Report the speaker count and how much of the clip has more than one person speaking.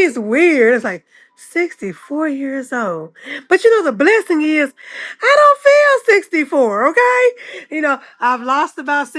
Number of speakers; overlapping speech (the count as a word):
one, no overlap